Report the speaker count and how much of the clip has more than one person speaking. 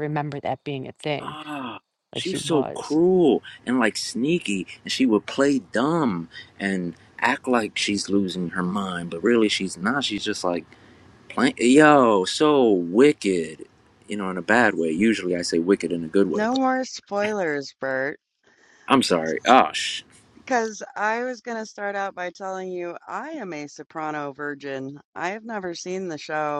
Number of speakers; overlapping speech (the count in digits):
3, about 4%